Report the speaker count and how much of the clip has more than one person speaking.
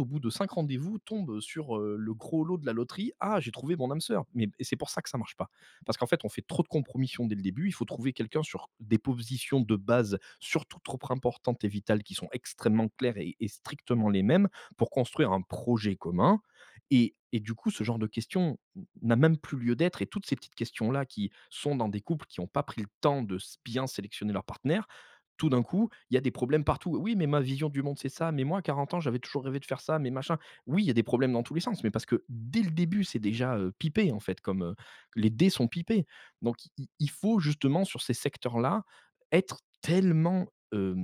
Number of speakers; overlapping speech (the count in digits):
1, no overlap